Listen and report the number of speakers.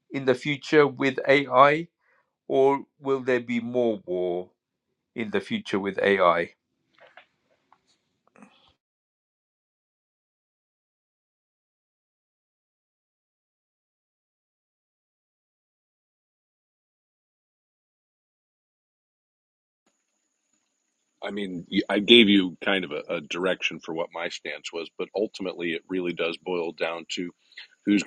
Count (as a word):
two